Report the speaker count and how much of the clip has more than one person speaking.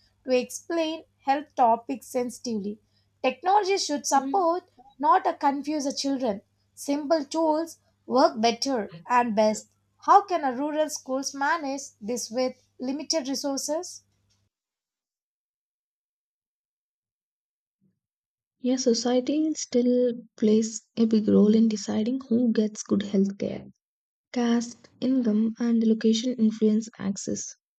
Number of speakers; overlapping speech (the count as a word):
two, about 1%